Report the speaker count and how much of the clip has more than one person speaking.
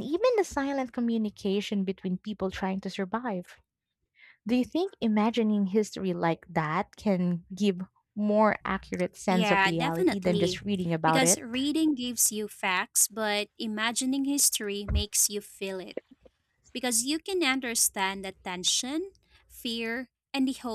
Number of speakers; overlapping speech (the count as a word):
two, about 8%